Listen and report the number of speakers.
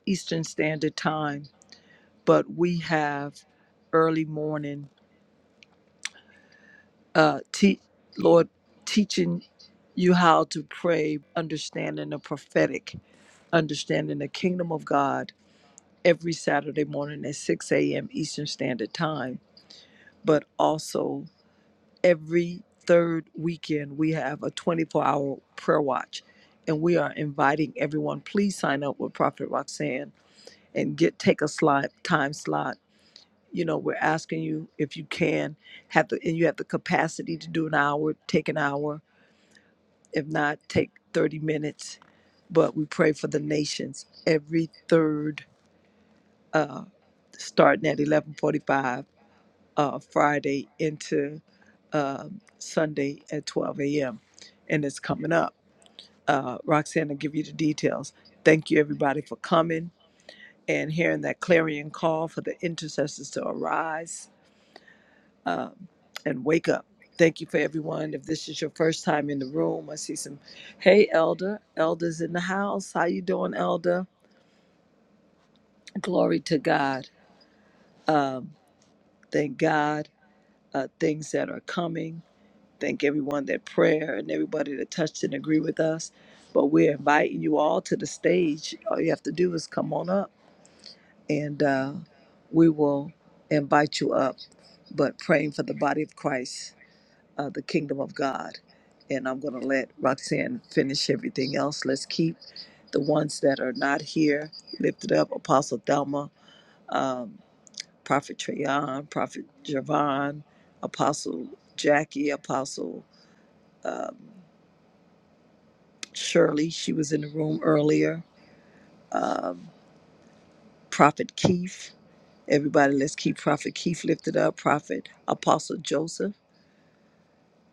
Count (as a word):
one